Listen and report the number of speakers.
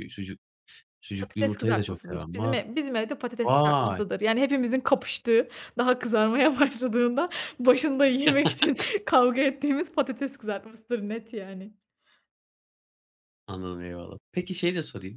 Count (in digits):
2